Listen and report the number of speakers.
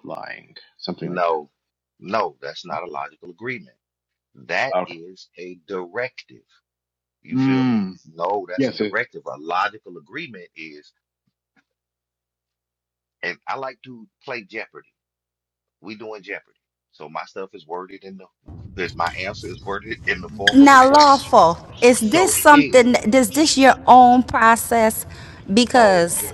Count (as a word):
three